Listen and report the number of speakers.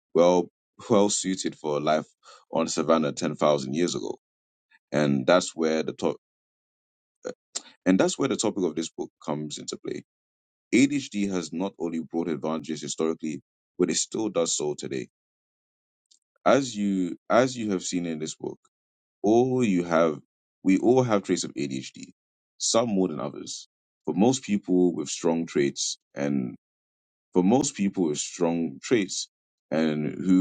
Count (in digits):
1